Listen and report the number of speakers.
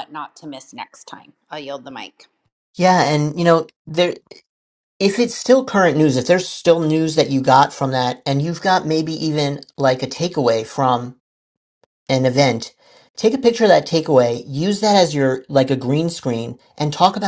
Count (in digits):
2